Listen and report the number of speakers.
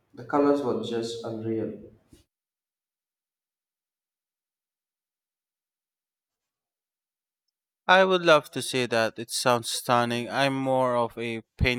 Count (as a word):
two